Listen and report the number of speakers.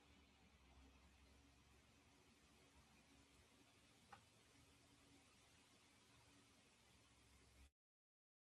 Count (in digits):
0